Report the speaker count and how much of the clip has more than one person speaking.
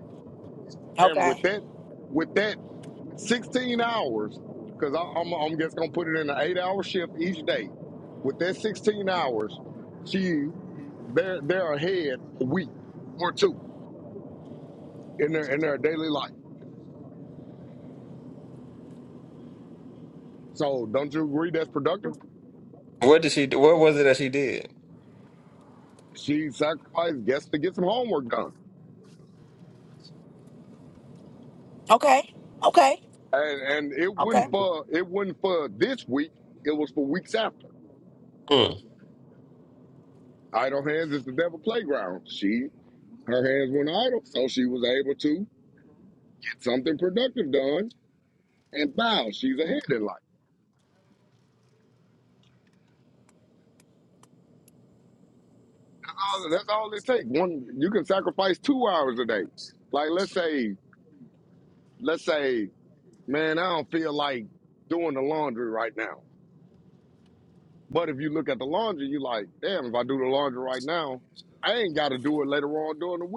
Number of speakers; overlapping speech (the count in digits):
3, about 1%